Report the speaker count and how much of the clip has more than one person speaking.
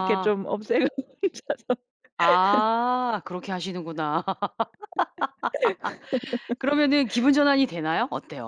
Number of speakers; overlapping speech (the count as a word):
two, about 4%